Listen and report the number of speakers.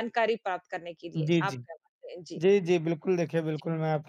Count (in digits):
2